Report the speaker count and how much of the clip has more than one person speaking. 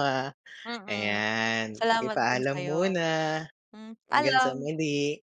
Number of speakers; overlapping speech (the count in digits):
2, about 38%